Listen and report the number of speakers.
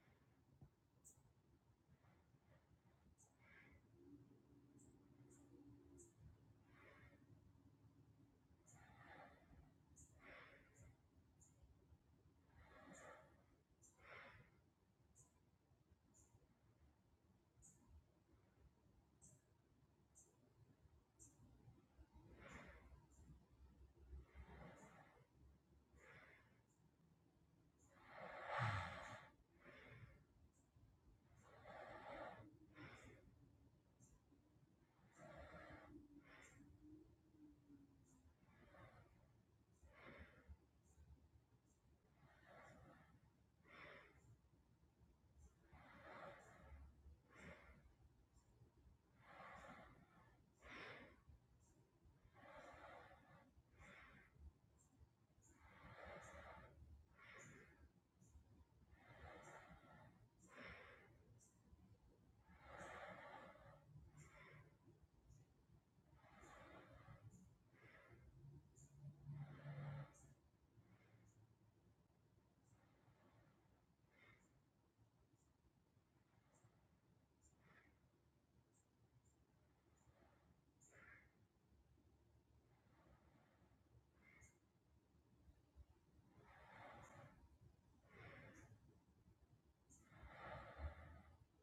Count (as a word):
zero